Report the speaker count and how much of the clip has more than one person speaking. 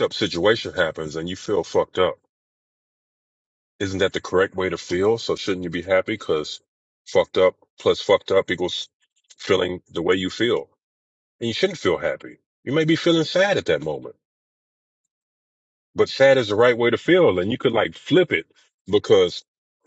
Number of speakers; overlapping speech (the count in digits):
1, no overlap